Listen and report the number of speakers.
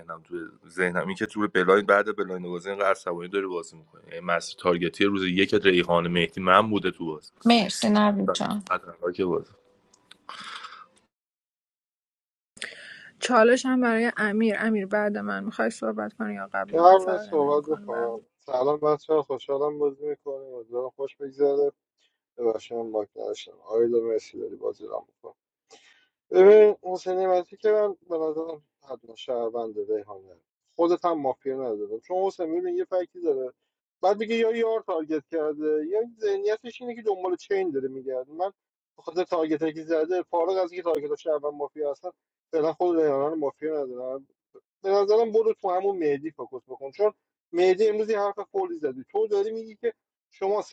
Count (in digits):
4